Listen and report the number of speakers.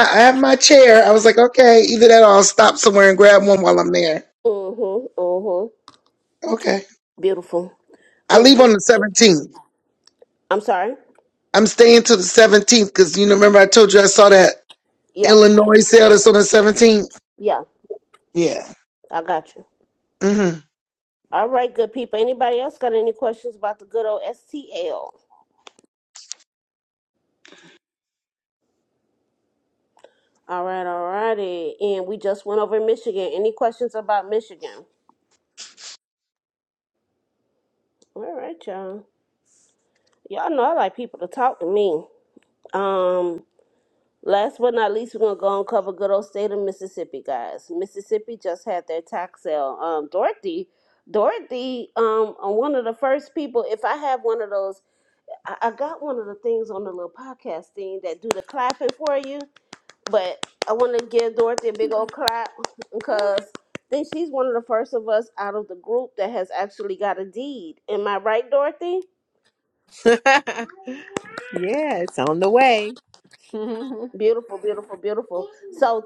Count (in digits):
3